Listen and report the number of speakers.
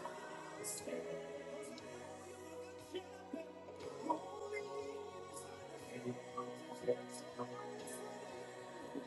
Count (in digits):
0